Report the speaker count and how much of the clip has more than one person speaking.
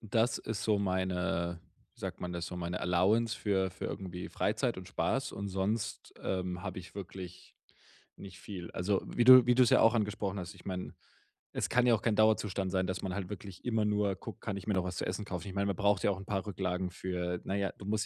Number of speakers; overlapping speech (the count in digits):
1, no overlap